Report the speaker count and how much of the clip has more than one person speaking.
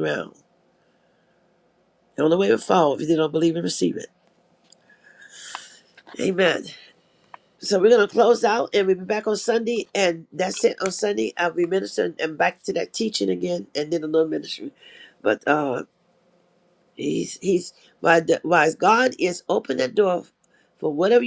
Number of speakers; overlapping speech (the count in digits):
1, no overlap